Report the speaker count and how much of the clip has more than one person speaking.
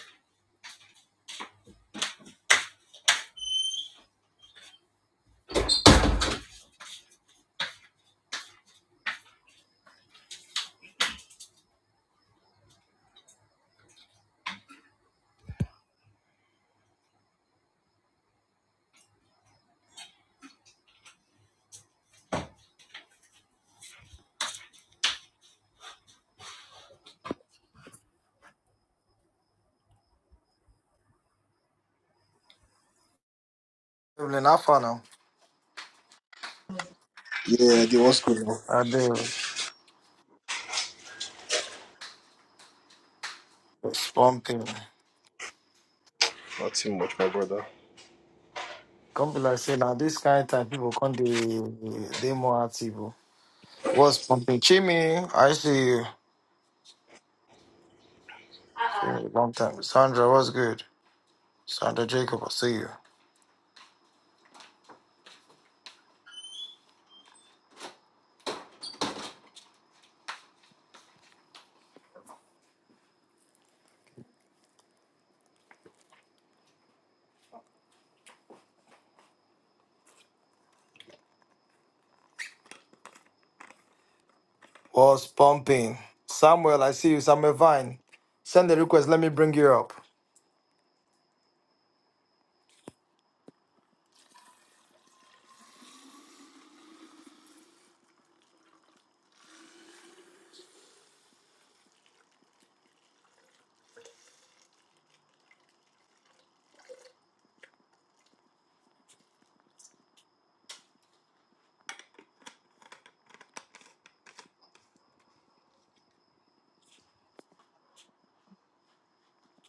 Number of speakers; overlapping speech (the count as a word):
two, no overlap